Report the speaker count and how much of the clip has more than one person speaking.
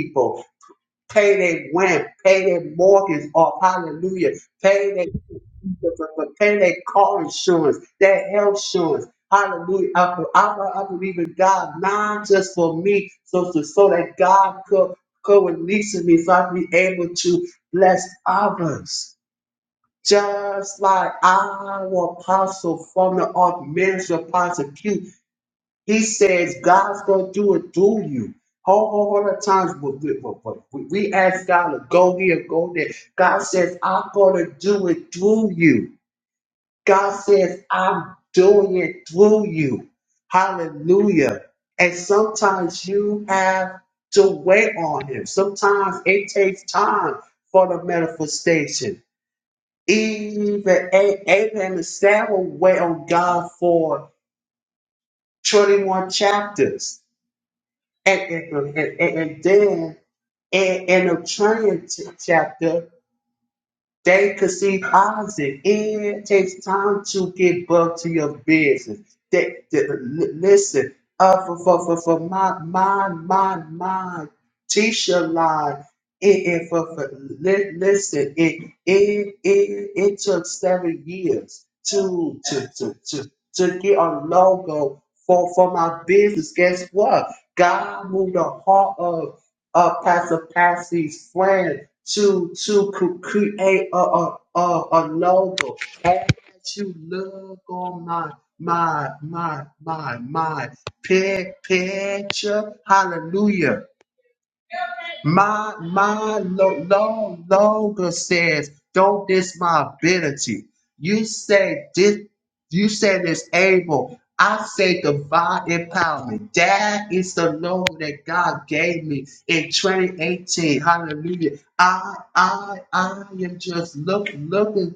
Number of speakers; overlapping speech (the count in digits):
1, no overlap